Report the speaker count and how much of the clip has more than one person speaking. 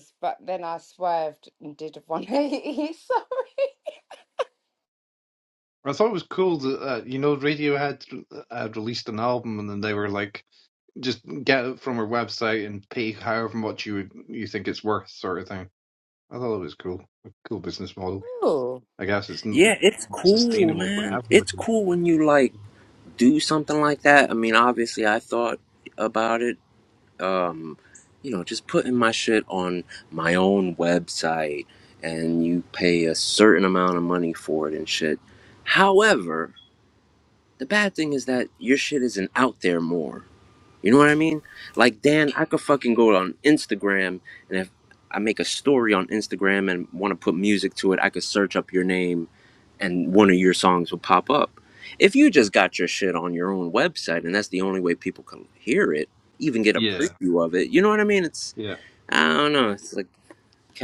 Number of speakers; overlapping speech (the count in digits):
3, about 3%